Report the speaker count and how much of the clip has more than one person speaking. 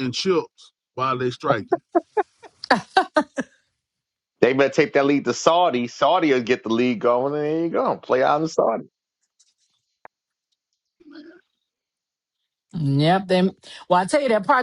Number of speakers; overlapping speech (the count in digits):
3, no overlap